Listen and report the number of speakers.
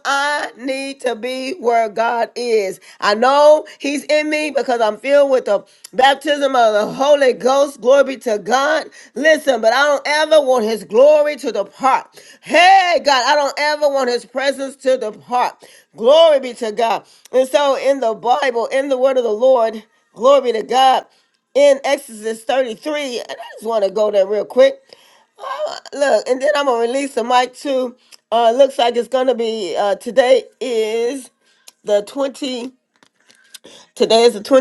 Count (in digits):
1